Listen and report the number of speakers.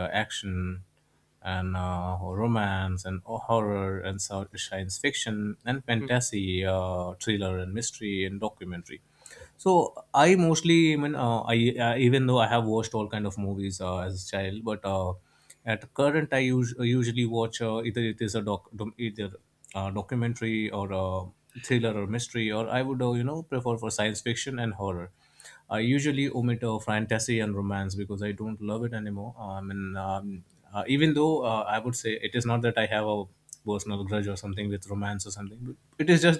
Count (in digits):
1